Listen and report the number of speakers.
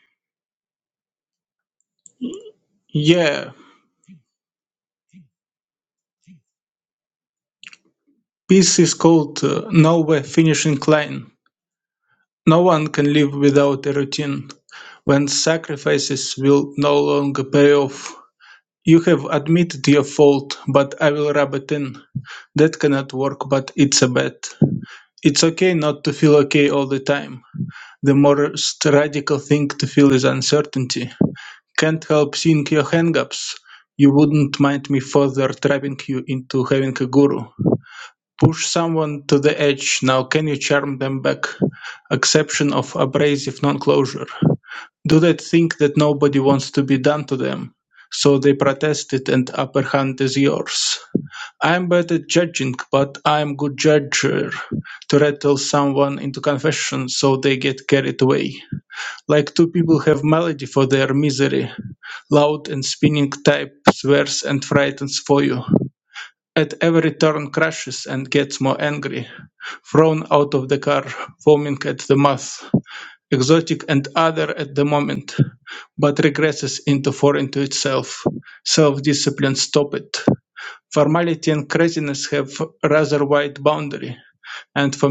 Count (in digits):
1